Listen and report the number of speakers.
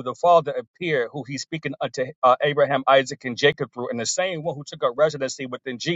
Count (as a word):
one